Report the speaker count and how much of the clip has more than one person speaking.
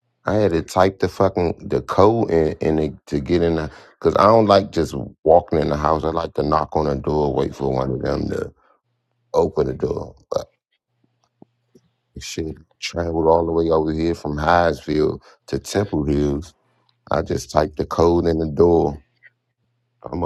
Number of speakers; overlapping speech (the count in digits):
1, no overlap